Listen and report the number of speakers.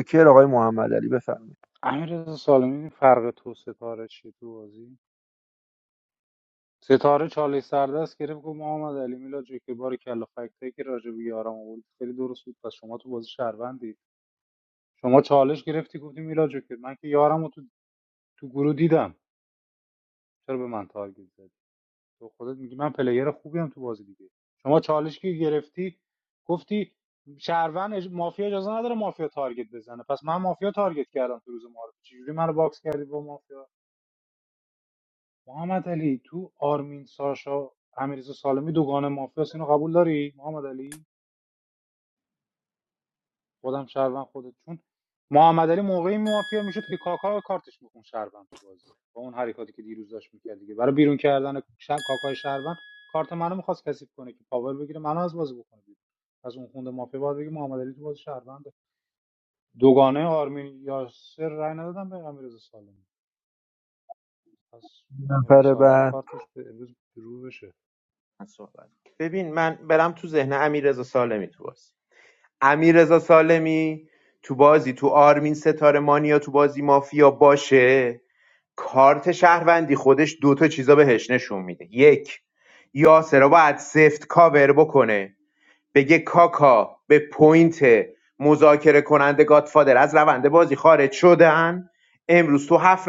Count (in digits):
3